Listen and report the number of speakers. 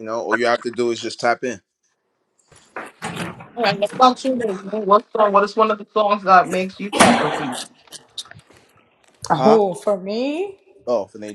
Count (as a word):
three